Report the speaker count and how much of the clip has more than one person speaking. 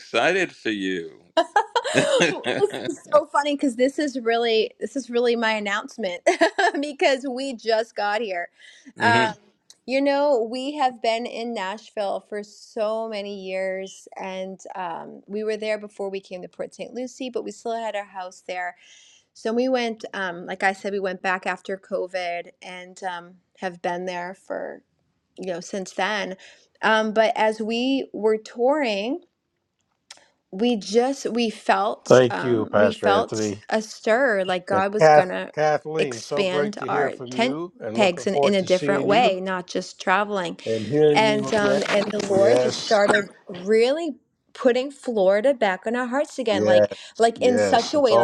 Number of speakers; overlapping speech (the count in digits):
3, about 17%